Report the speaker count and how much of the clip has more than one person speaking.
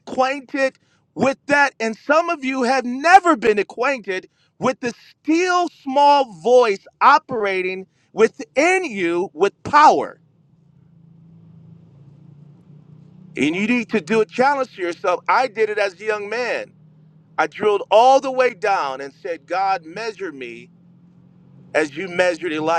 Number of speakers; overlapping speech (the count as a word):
one, no overlap